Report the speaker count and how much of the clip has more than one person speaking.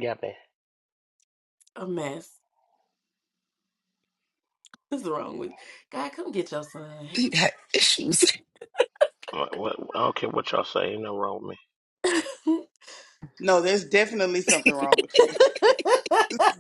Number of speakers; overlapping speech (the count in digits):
4, no overlap